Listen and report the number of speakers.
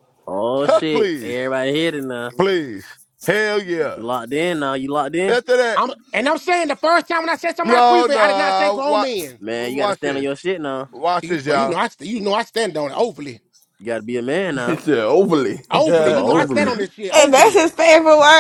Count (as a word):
five